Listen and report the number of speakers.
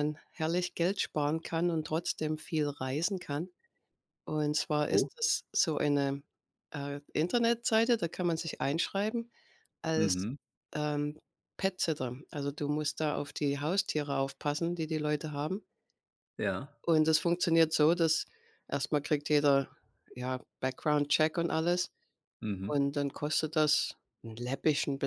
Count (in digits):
2